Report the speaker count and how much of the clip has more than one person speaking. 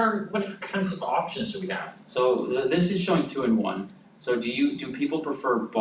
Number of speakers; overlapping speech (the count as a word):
two, no overlap